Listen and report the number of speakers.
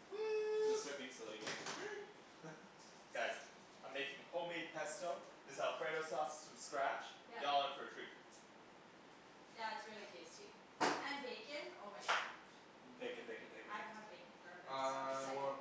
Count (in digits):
4